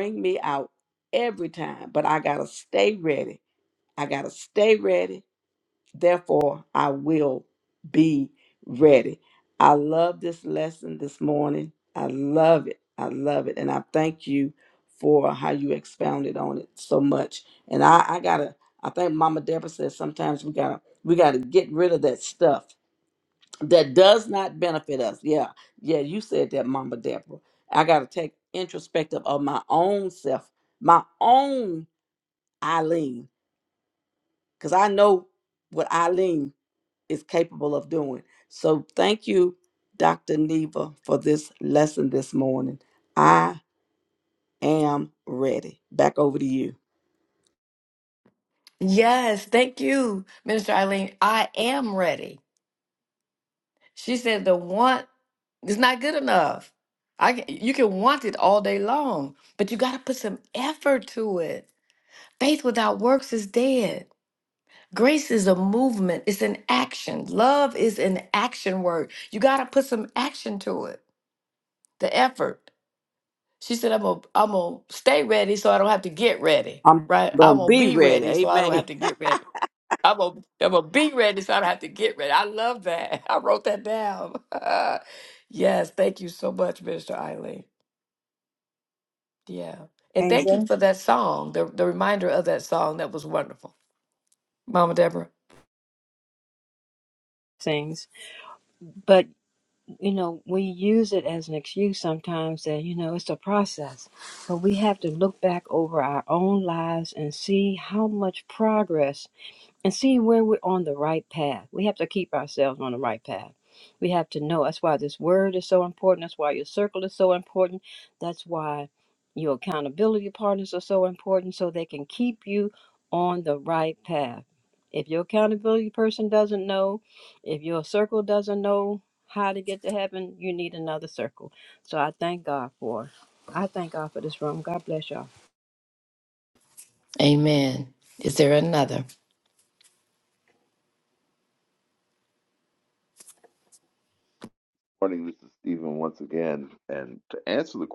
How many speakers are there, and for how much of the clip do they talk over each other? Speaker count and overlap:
4, about 2%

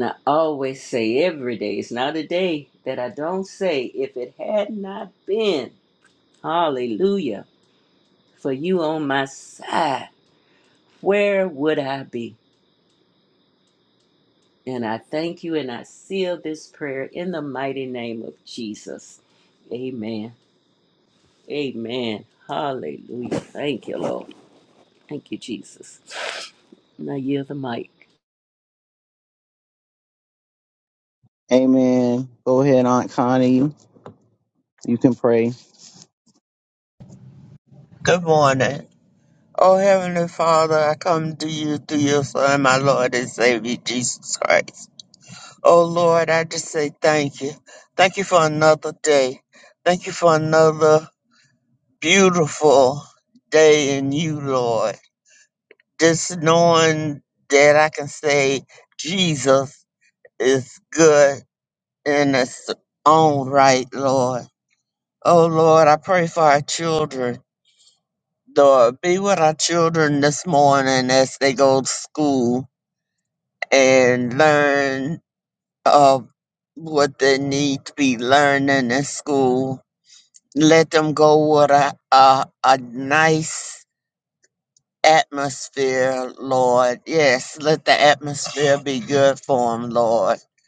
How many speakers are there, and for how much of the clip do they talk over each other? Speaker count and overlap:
3, no overlap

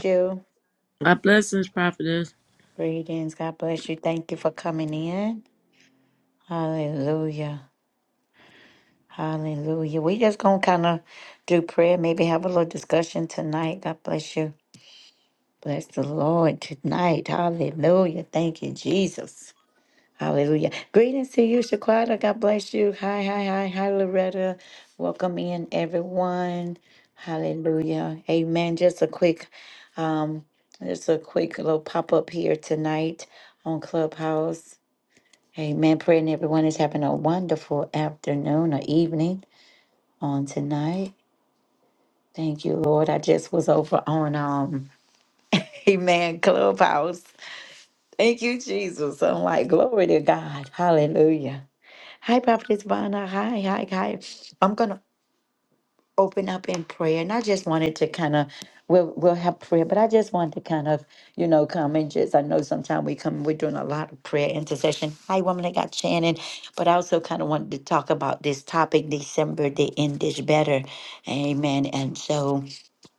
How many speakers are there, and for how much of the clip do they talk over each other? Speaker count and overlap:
2, no overlap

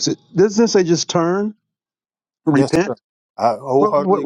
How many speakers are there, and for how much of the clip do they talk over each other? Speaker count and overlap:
2, about 21%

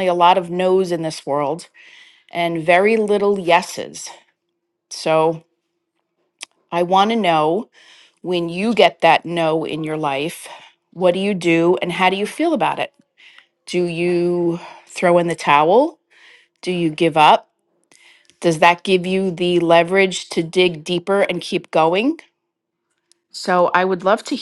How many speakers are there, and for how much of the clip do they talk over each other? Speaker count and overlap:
1, no overlap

